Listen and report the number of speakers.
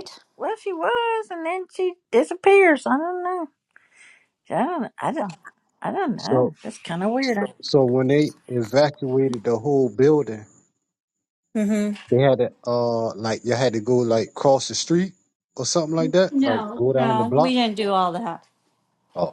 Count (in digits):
3